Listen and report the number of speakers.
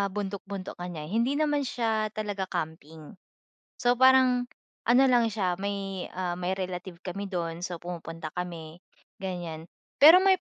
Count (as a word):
one